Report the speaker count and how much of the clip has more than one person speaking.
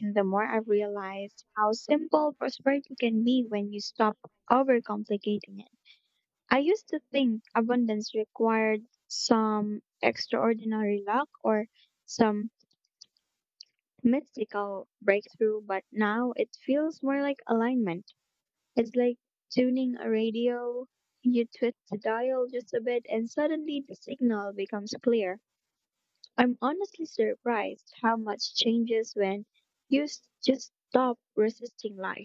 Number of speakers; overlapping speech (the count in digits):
1, no overlap